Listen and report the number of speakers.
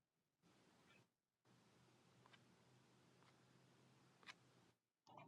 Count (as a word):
zero